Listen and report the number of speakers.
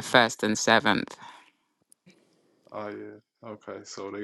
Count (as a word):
two